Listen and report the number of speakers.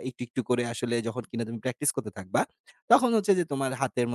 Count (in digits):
1